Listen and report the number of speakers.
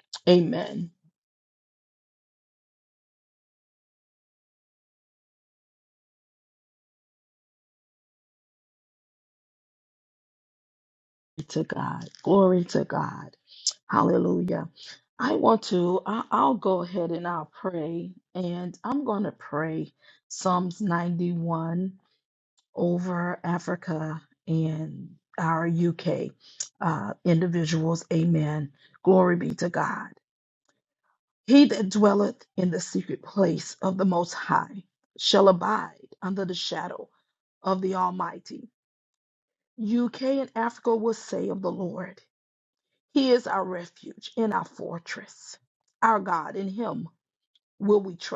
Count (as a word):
one